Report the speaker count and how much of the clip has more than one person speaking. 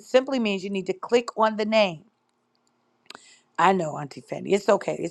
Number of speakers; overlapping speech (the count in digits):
1, no overlap